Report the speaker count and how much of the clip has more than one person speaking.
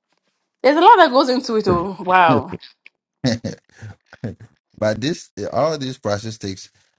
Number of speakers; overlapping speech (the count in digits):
2, no overlap